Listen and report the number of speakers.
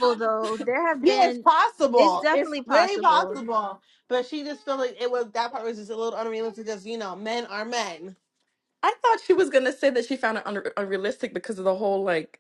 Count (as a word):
three